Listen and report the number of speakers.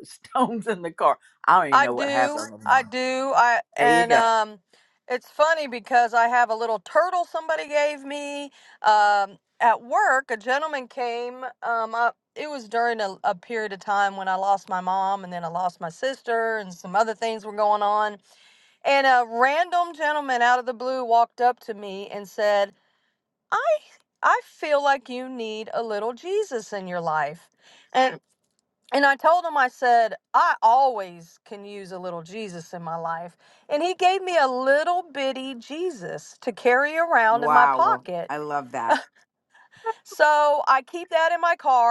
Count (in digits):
3